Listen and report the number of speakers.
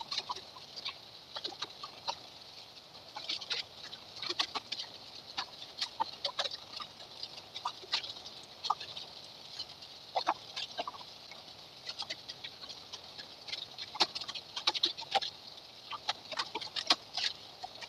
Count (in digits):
0